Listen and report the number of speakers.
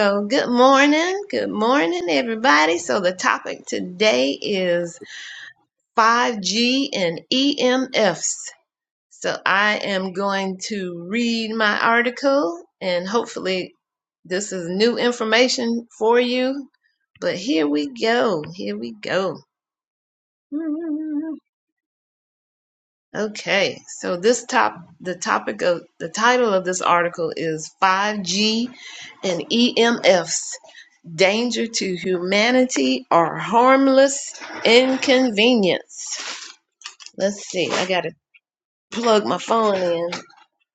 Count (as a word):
one